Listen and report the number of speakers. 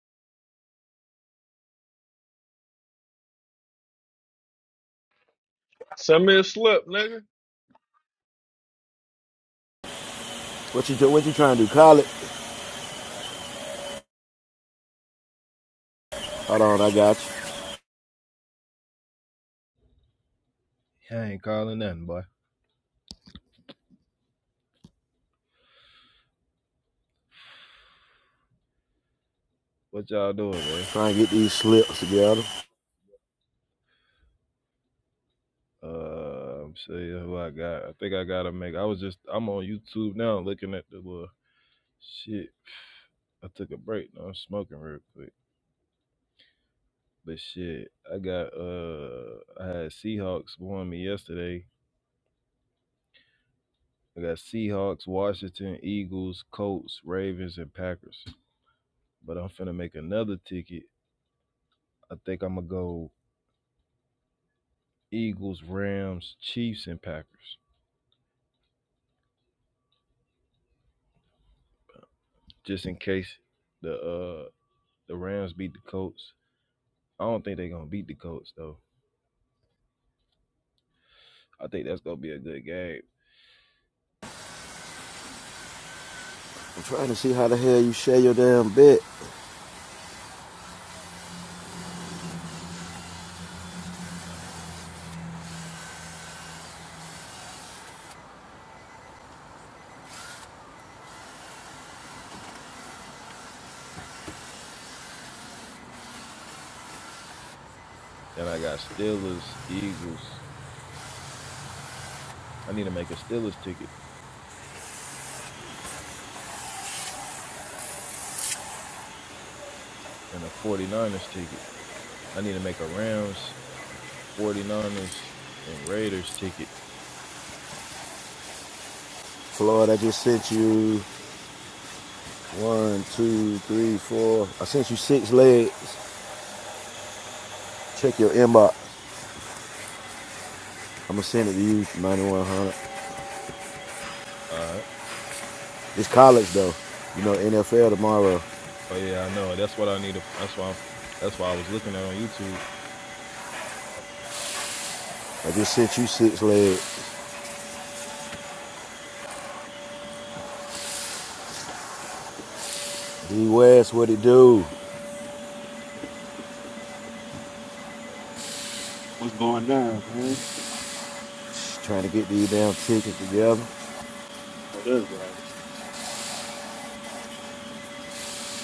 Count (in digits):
4